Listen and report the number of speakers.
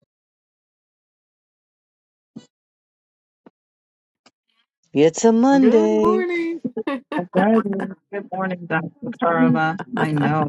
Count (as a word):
three